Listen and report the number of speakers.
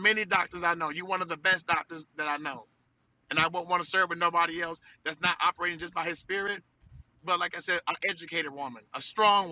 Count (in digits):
1